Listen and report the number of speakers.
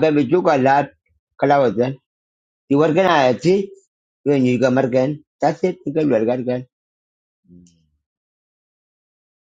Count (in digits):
1